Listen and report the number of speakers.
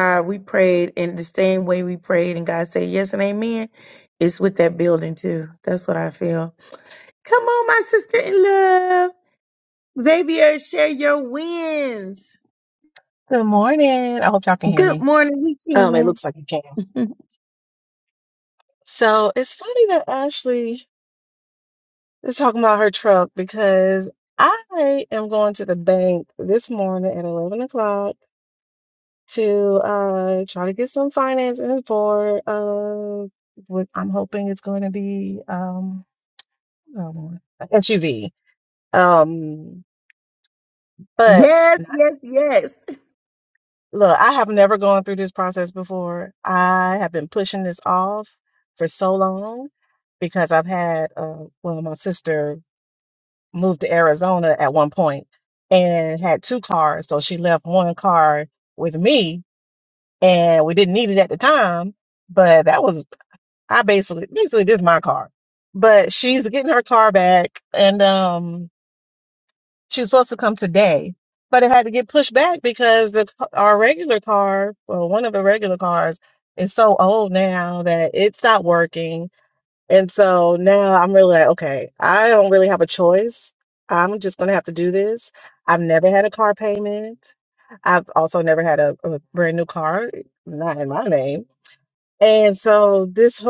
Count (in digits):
2